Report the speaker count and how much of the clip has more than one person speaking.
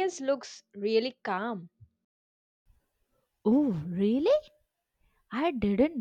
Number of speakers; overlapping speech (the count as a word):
two, no overlap